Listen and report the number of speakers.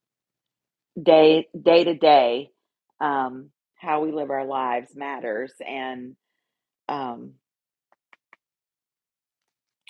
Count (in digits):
1